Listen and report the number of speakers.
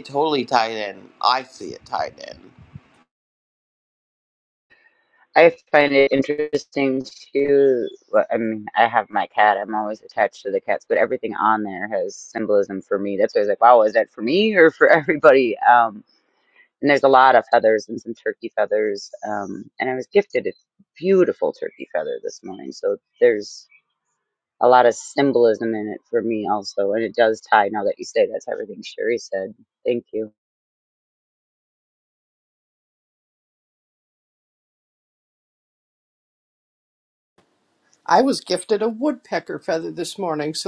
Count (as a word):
three